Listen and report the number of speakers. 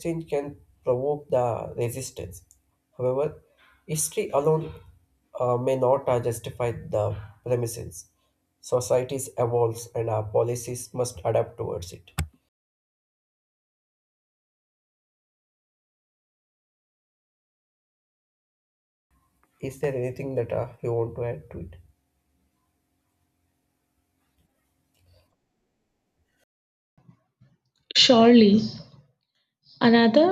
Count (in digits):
2